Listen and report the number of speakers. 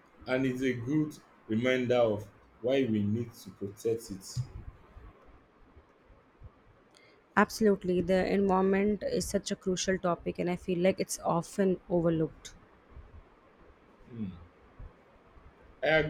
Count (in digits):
2